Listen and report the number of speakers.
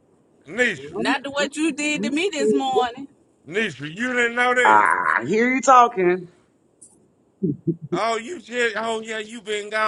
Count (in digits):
3